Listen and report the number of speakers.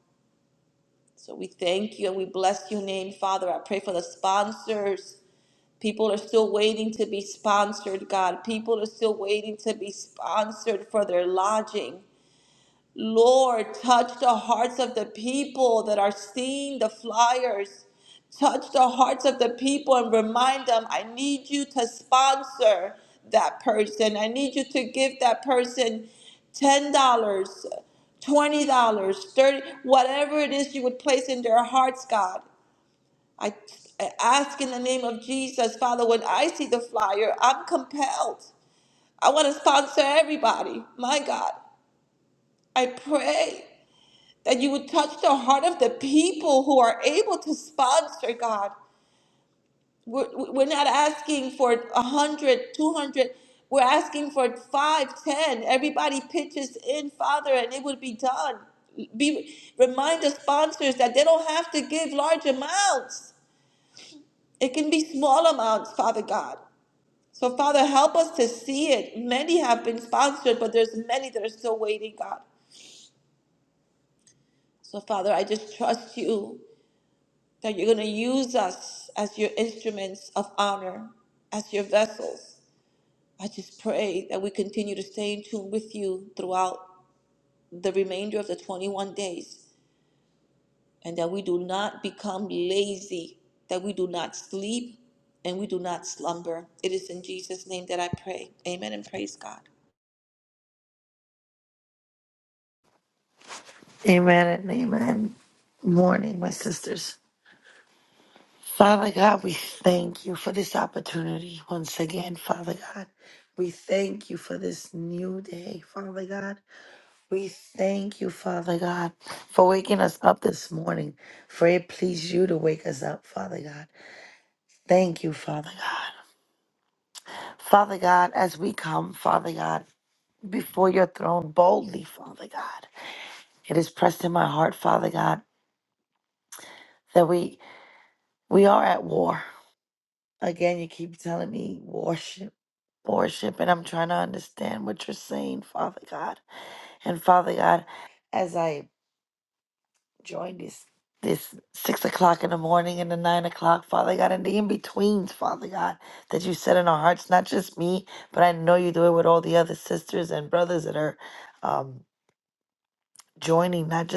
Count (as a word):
two